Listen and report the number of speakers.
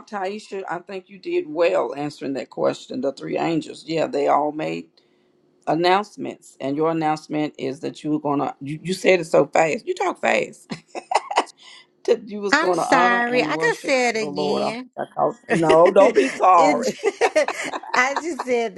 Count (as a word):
two